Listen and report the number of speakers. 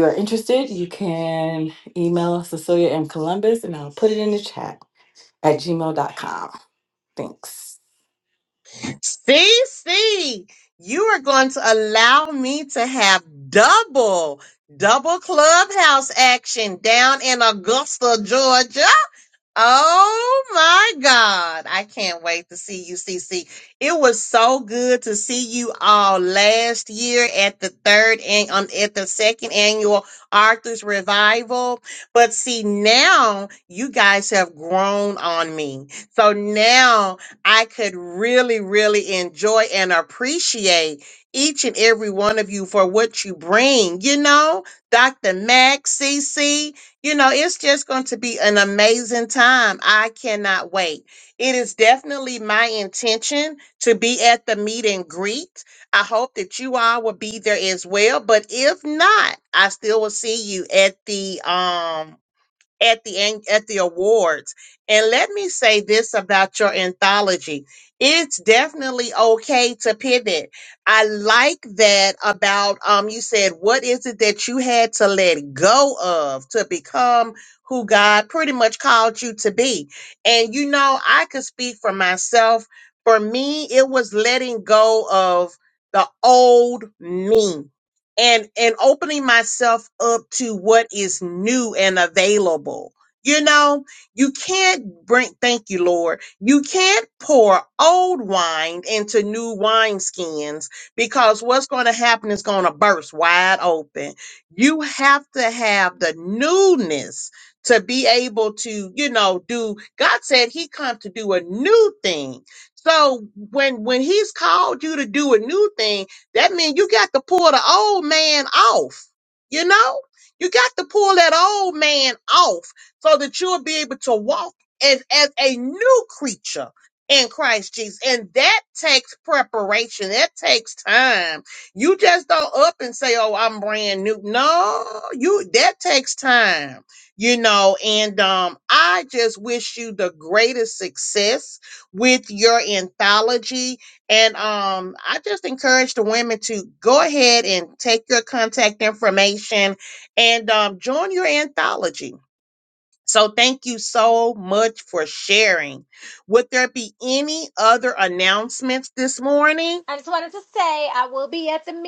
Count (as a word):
three